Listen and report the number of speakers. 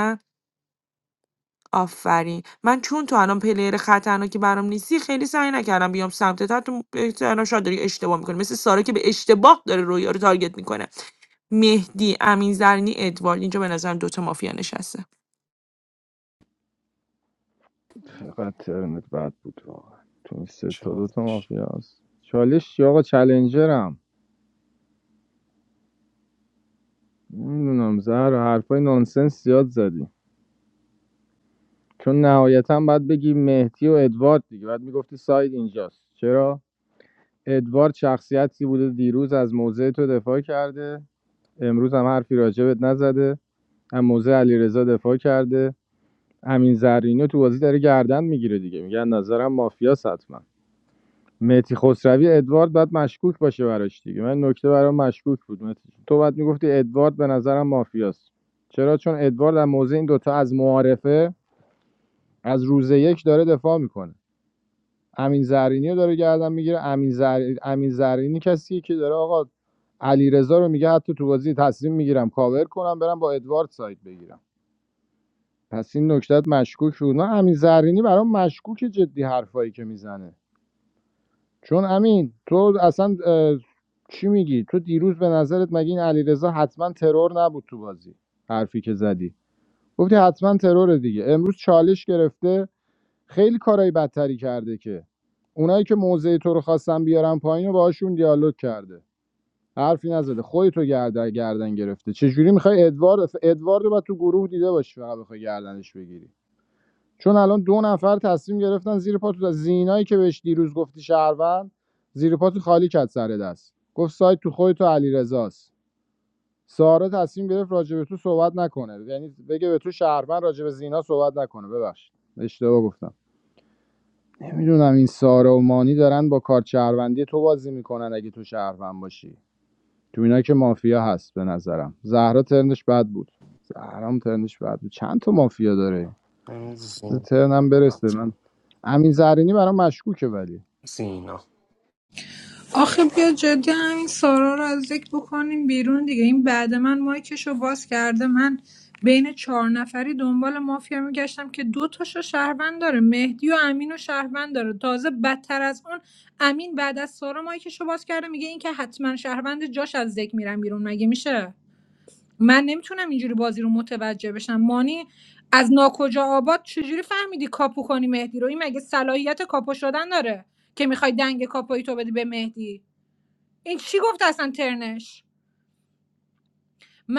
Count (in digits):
4